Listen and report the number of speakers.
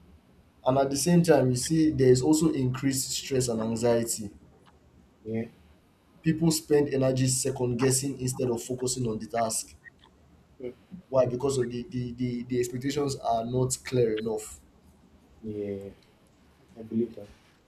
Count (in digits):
2